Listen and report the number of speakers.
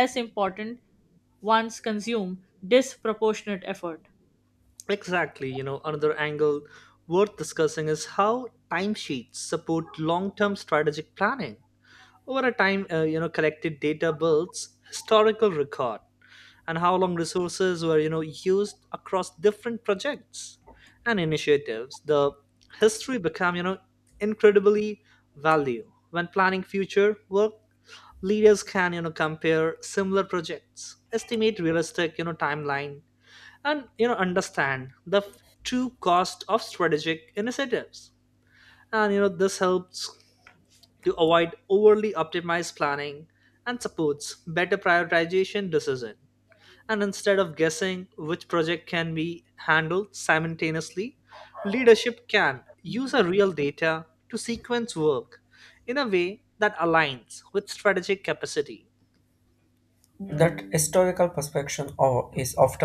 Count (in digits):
3